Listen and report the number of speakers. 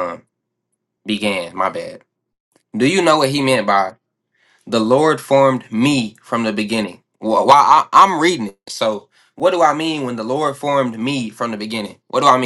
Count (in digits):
1